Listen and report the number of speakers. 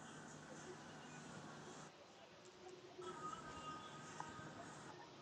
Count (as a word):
zero